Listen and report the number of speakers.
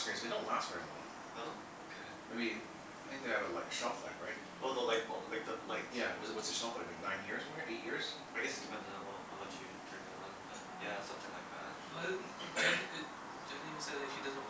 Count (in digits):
3